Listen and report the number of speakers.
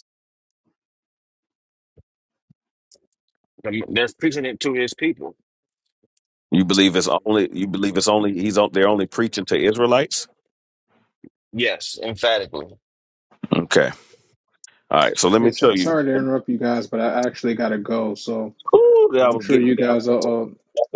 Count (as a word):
three